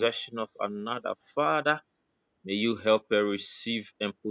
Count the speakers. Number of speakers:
1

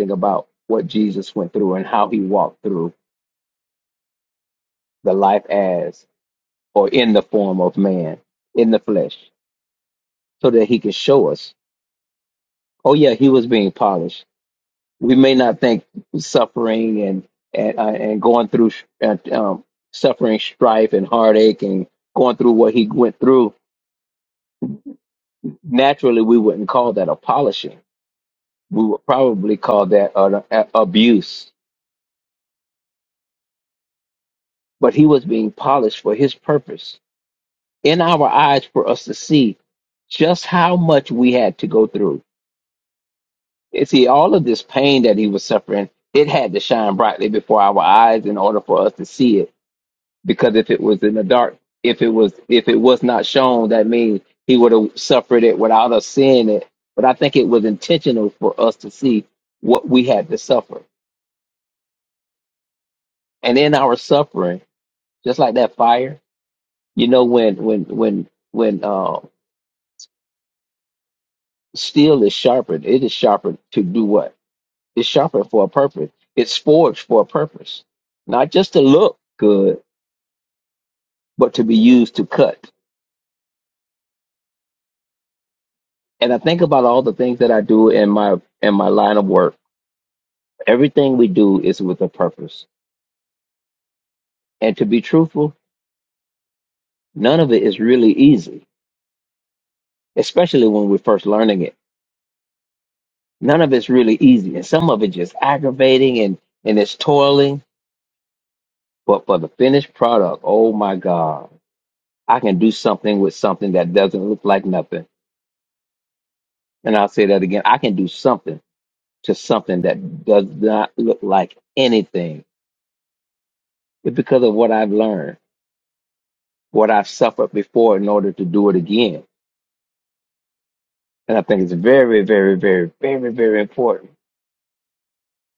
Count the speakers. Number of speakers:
1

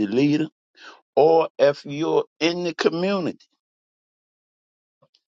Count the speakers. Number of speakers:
1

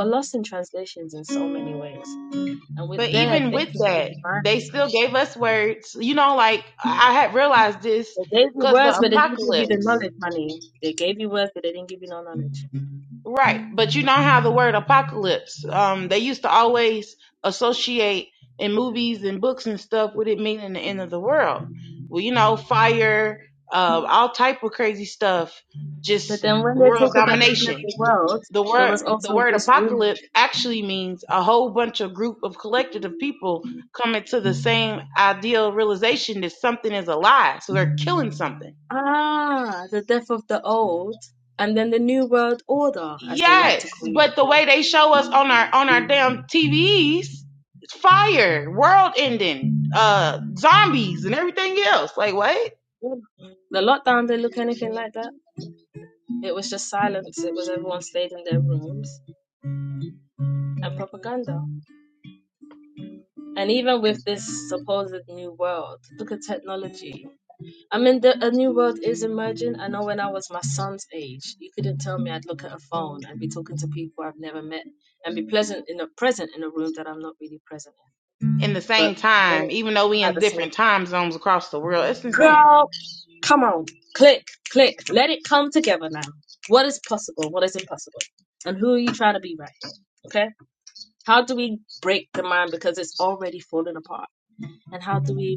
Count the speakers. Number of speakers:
2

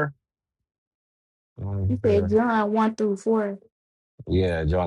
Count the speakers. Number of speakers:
2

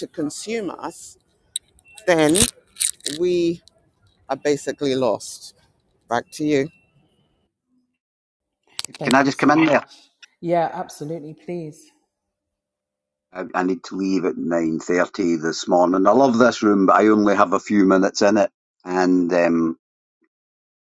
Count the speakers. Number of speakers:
3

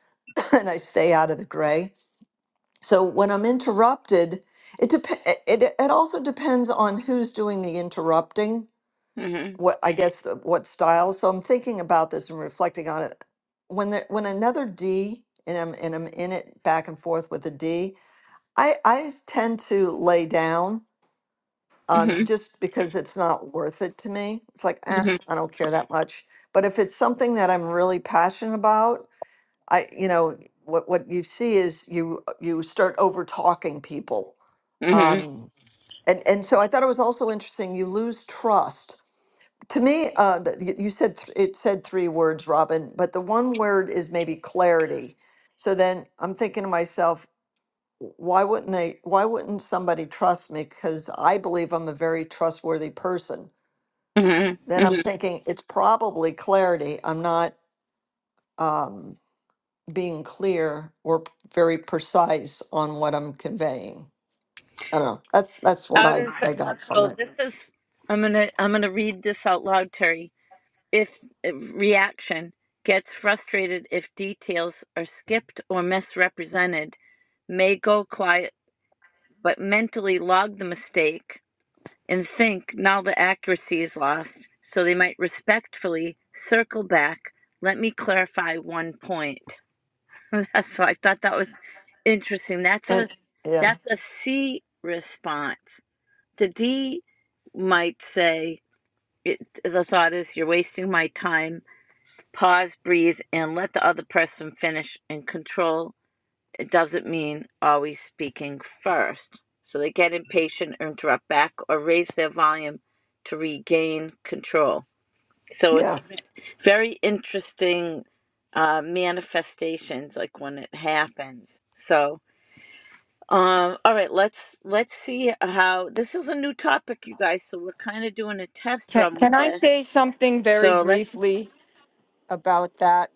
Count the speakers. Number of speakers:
3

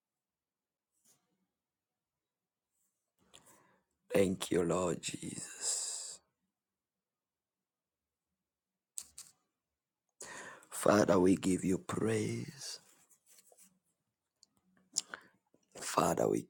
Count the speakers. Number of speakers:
1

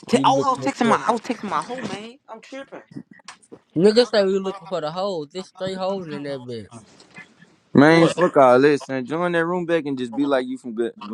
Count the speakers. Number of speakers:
3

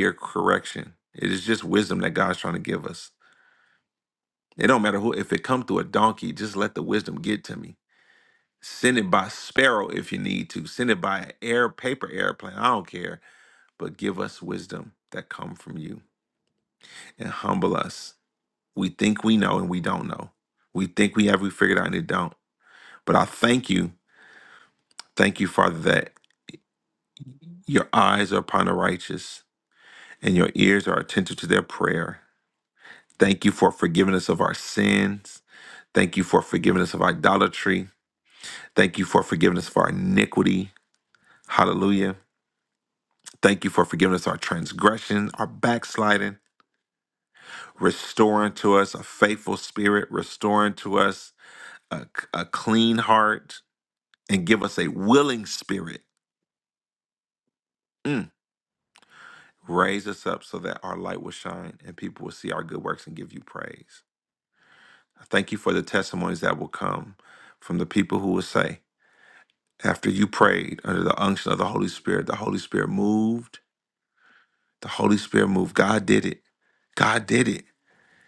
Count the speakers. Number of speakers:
1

